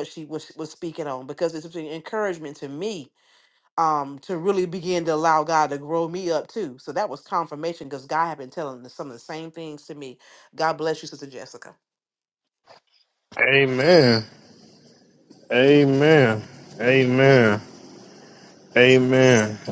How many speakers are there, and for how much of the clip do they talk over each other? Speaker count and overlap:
2, no overlap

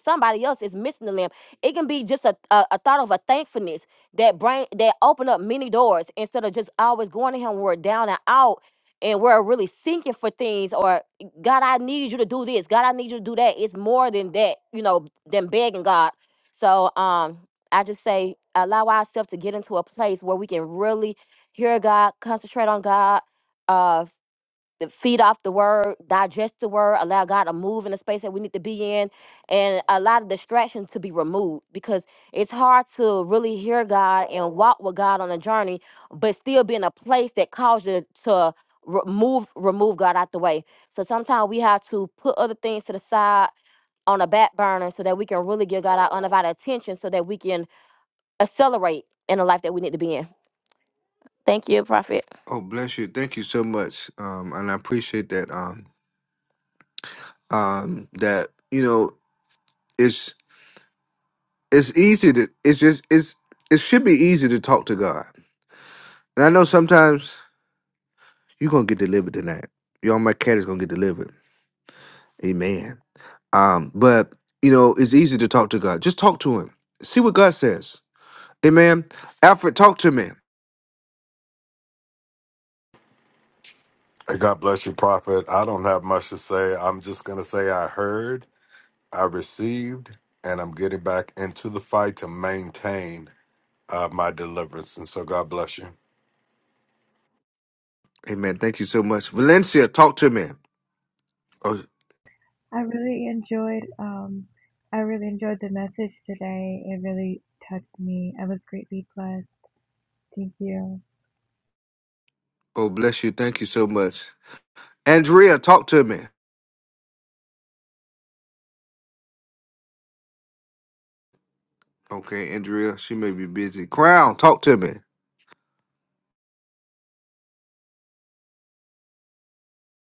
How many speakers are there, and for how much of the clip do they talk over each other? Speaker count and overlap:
4, no overlap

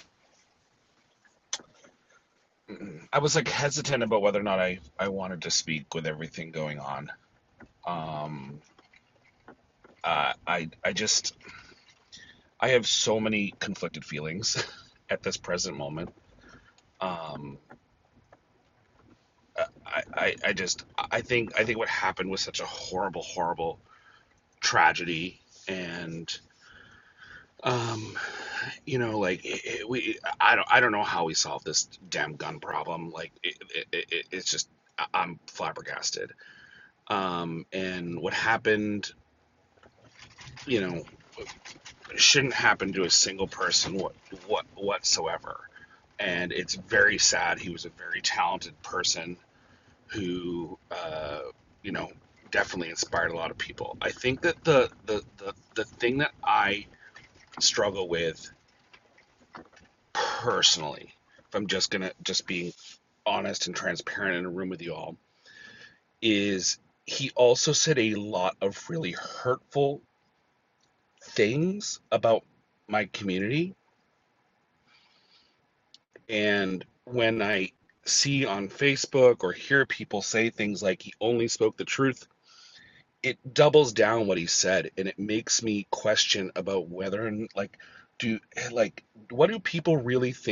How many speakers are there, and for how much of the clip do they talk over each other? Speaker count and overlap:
1, no overlap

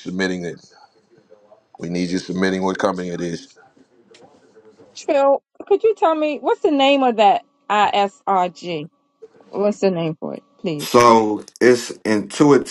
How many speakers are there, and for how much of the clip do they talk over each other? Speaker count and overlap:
3, under 1%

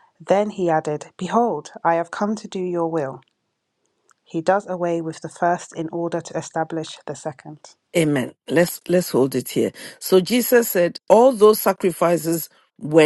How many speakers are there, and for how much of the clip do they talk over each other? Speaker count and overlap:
2, no overlap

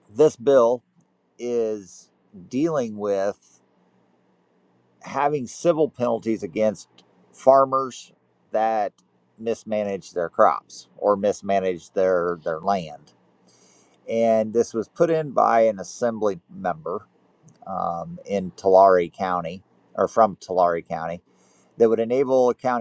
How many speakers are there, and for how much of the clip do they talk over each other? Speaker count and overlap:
1, no overlap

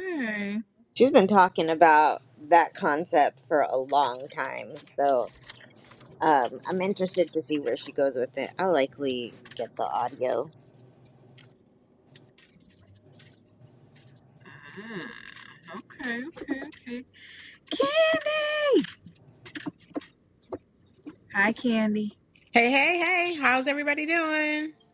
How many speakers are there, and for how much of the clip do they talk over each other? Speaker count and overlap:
3, no overlap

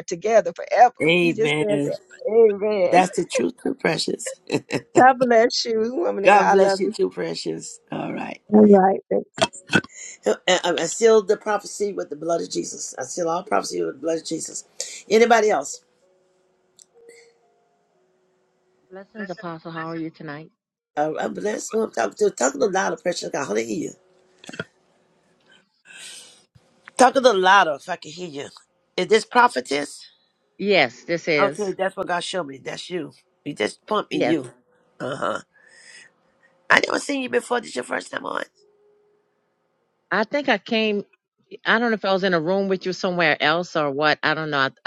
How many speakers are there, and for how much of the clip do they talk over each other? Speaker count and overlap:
3, about 5%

